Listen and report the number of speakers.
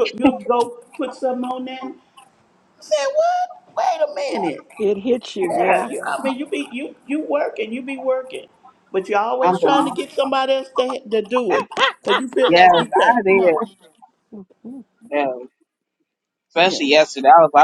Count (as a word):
three